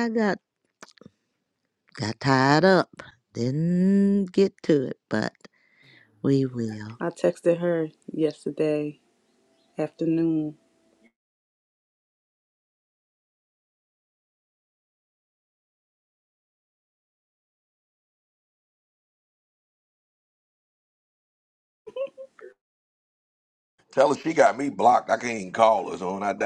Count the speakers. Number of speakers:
3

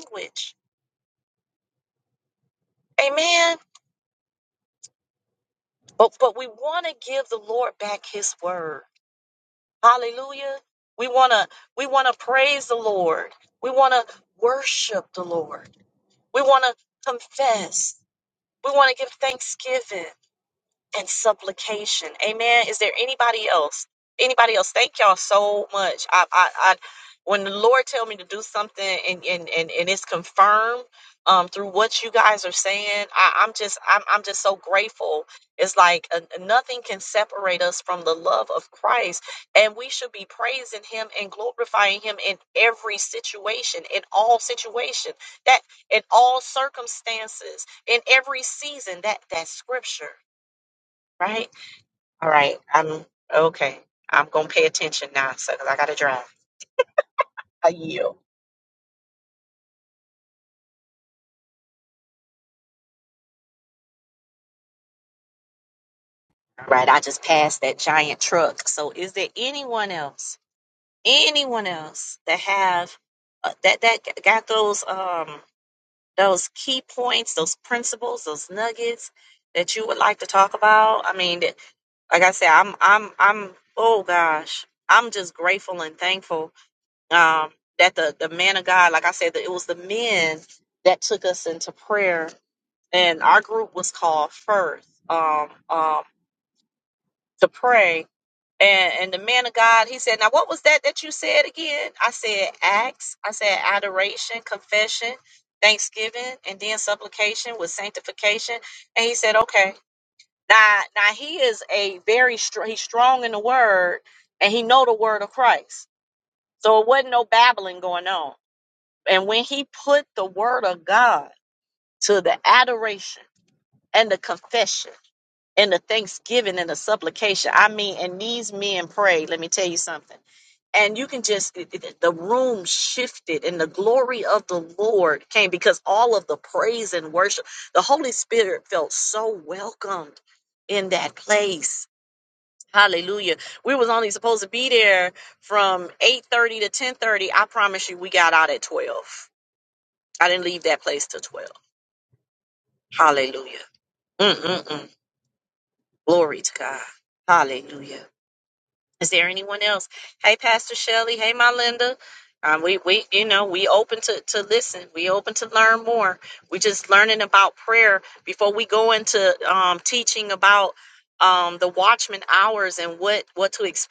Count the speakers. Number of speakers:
1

